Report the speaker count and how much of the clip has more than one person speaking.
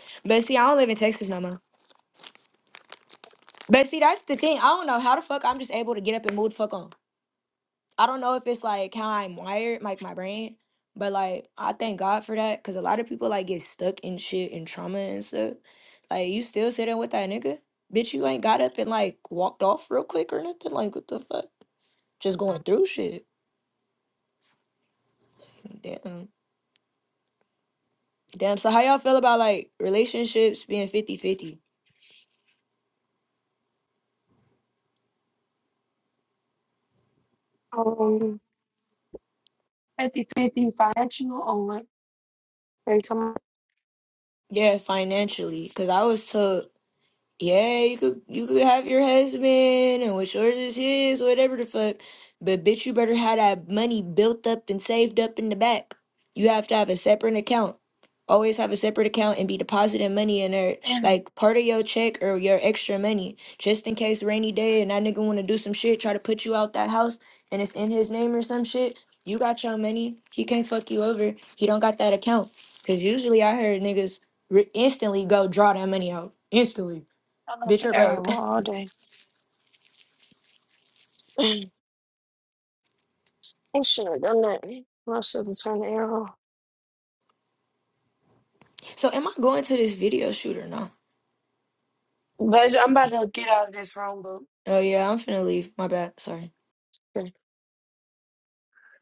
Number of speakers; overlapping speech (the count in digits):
2, about 1%